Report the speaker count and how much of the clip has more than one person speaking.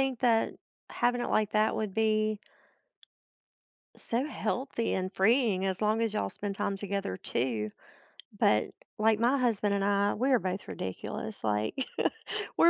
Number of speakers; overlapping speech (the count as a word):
one, no overlap